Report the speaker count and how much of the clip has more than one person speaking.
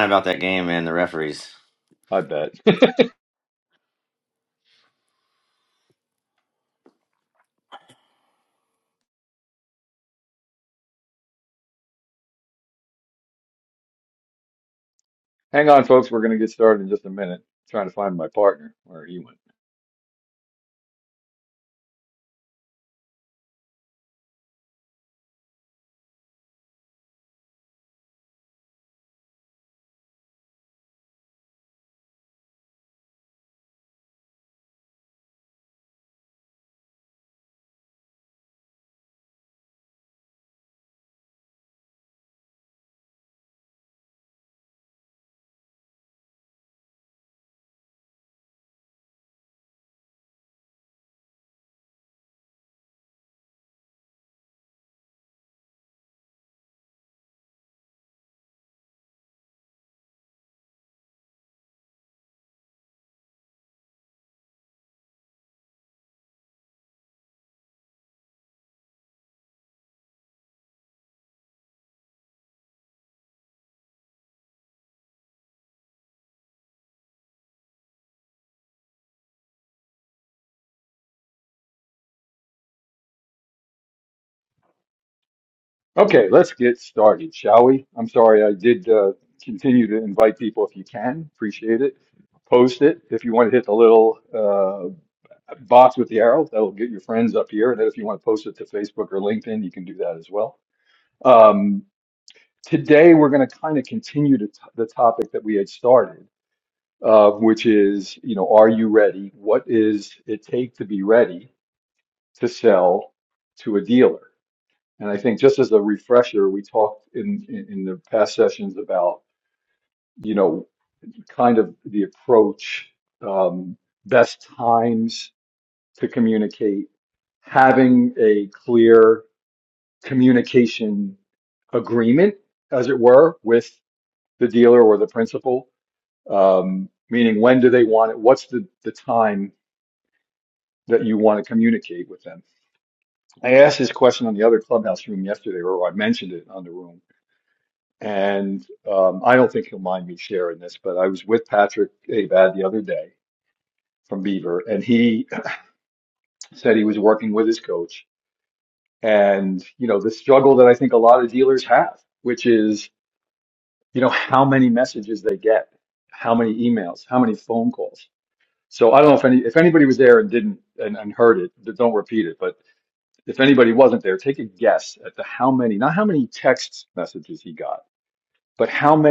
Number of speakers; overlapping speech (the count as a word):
two, no overlap